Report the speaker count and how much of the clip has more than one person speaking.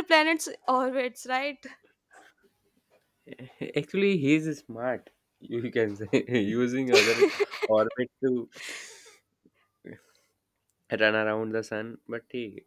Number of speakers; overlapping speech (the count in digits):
2, no overlap